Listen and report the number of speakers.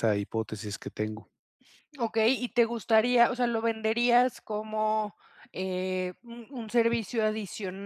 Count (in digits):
2